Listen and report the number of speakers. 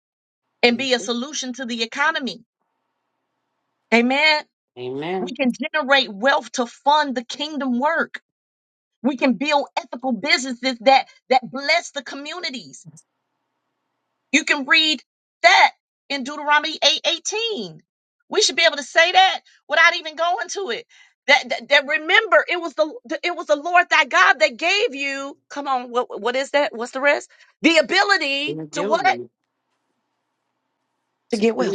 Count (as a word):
two